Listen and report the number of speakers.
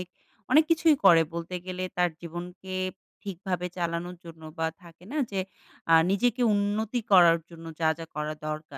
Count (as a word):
one